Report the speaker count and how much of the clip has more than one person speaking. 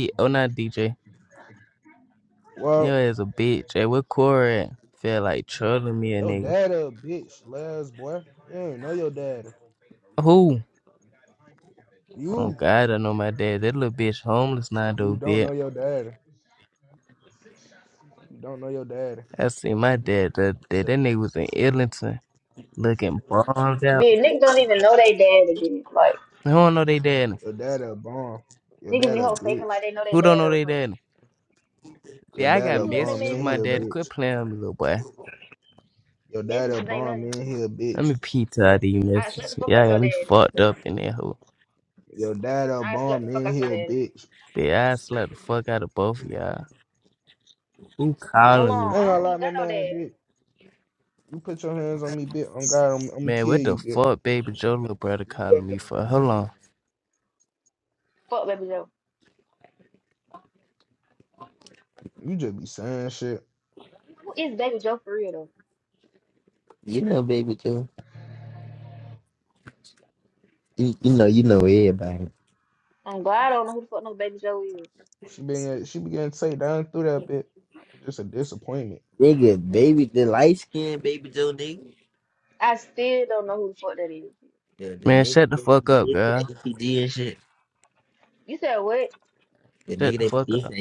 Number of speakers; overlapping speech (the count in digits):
4, about 13%